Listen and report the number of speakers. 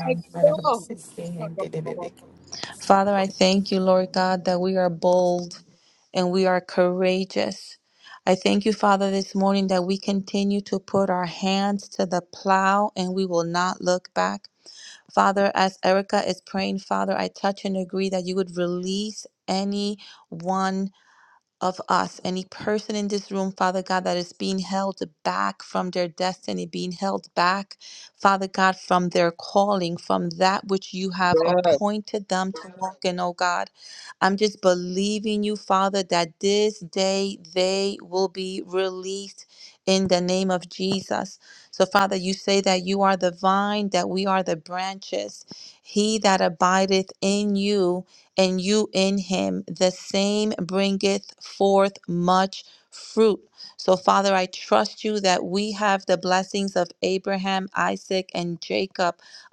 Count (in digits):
2